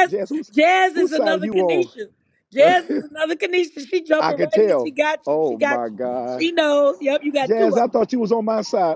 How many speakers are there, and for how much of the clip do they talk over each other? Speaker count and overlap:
2, about 30%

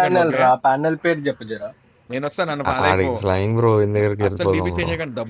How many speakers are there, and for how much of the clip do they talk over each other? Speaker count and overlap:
3, about 39%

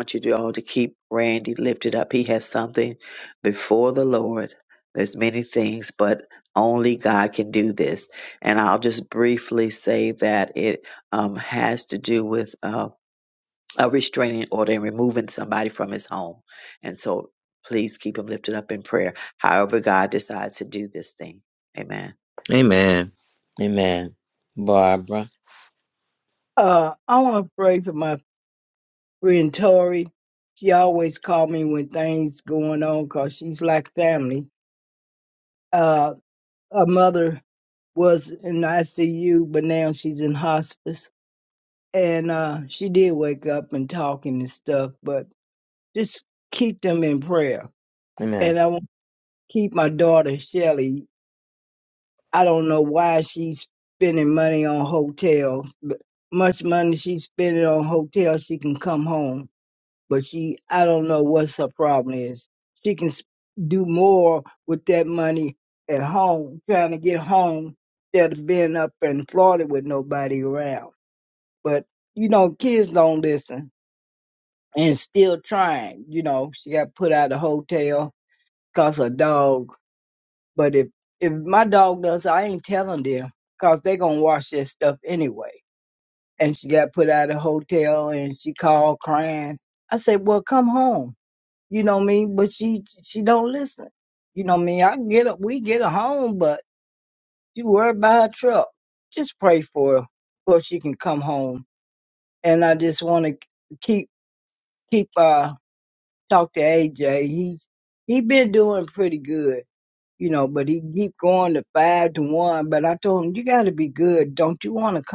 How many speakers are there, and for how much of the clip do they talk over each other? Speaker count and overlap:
3, under 1%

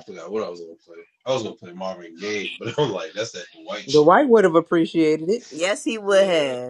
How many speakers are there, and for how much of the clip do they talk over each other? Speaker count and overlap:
3, about 11%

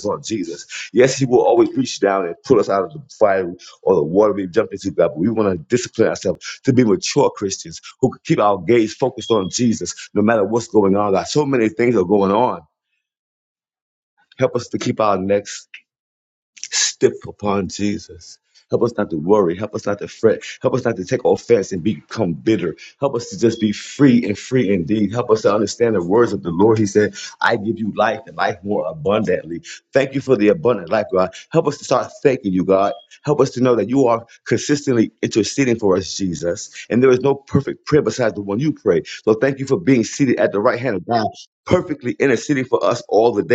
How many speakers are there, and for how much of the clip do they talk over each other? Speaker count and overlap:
1, no overlap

